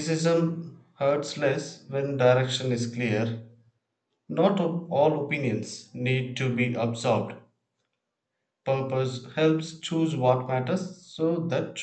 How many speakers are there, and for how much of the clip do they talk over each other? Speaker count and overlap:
one, no overlap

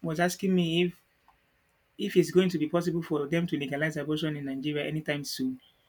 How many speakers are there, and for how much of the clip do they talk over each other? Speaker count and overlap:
one, no overlap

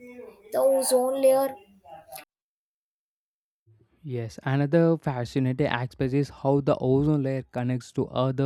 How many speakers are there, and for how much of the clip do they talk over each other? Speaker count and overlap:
two, no overlap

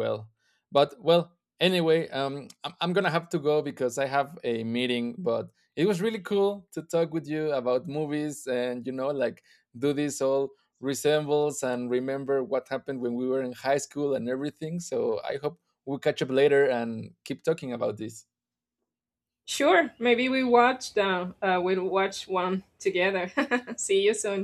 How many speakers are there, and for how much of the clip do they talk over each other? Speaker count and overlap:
two, no overlap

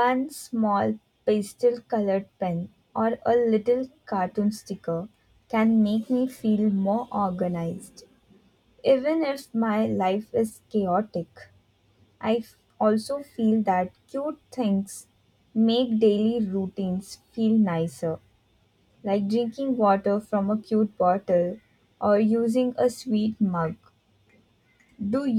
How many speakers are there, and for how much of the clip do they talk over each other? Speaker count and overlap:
one, no overlap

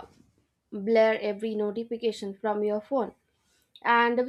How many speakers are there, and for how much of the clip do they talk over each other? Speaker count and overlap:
one, no overlap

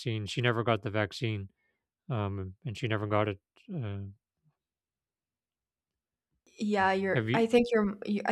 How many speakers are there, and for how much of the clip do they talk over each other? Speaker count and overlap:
two, about 3%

